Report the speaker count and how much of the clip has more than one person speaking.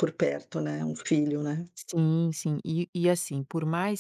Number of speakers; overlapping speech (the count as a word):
two, no overlap